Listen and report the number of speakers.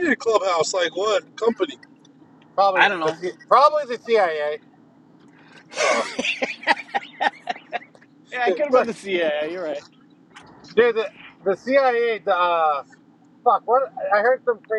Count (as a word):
three